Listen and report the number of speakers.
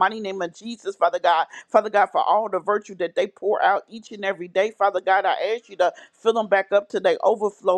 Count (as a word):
one